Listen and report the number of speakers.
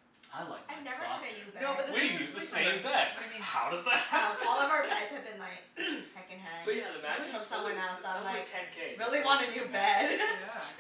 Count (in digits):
4